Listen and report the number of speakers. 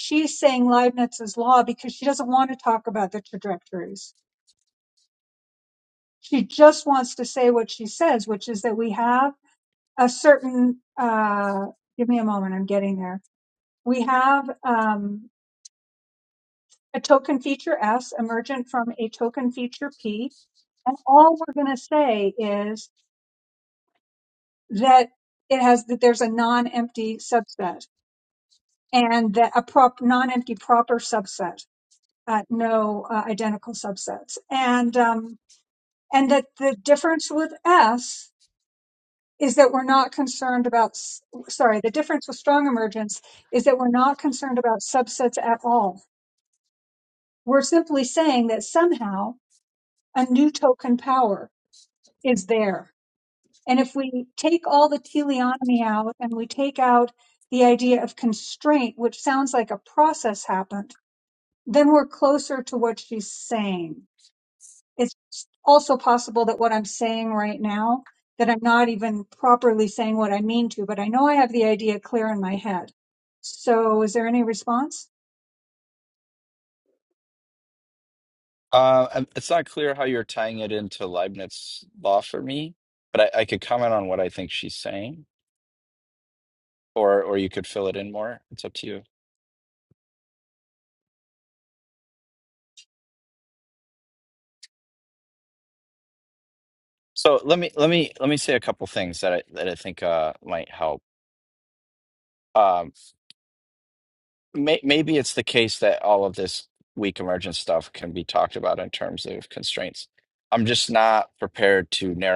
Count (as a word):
two